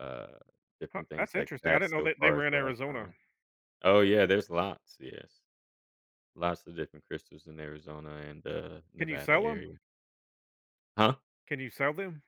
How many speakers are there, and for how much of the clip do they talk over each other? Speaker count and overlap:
two, about 22%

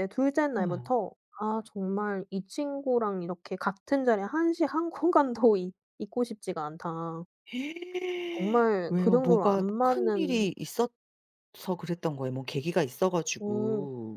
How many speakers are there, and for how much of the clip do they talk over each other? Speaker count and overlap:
two, about 17%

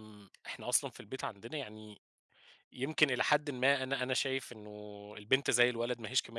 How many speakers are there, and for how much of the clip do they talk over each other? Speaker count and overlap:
one, no overlap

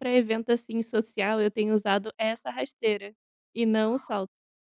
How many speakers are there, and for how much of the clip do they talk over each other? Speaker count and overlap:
one, no overlap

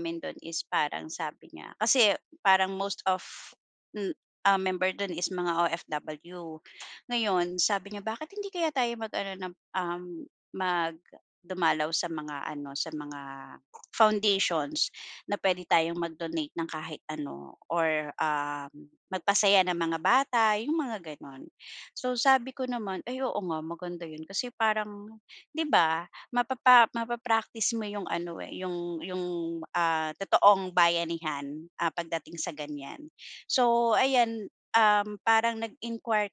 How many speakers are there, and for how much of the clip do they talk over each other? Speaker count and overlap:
one, no overlap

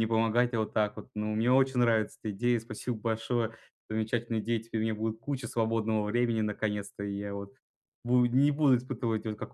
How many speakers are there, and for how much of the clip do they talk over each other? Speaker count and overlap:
one, no overlap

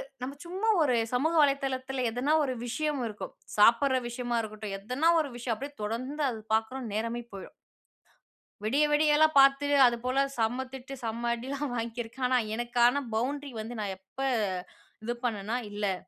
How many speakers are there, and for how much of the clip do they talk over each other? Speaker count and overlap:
one, no overlap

